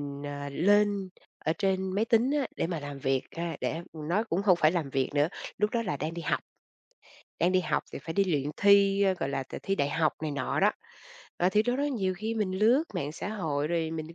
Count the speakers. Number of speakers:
1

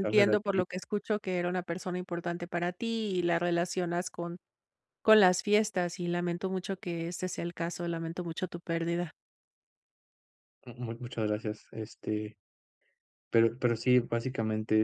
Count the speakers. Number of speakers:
2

